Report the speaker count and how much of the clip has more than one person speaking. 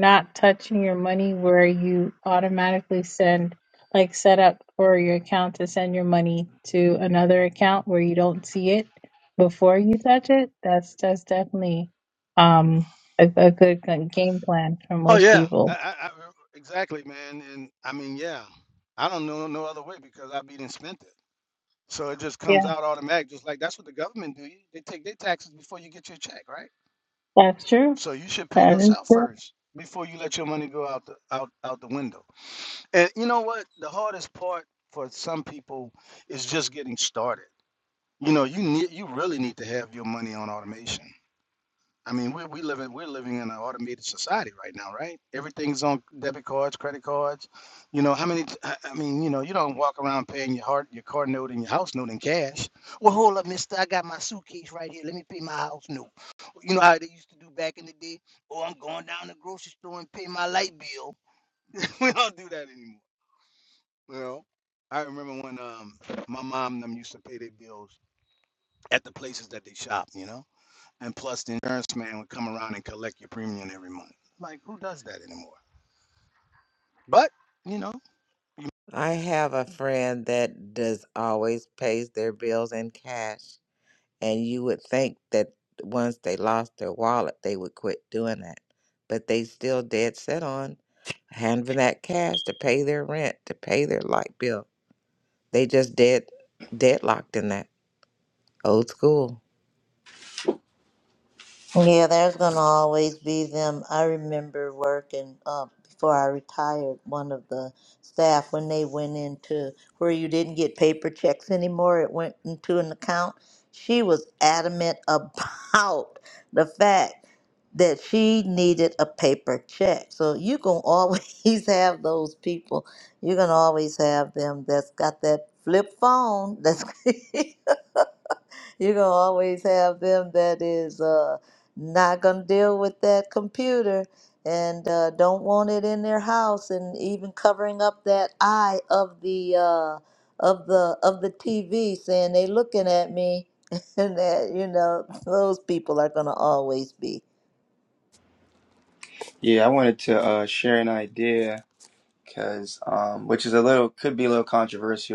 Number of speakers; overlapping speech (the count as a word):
five, about 1%